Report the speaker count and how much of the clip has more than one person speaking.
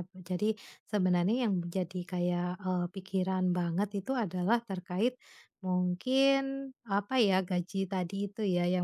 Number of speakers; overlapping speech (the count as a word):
one, no overlap